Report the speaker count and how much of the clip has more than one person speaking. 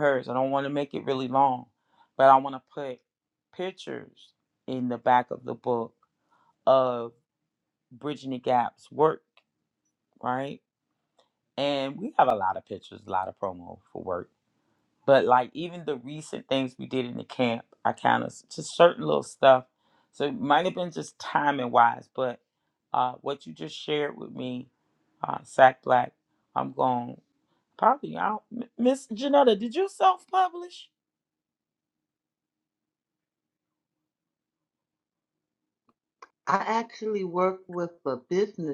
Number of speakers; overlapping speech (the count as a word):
two, no overlap